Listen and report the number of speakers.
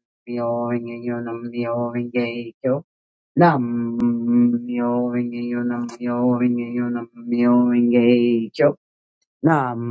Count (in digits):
1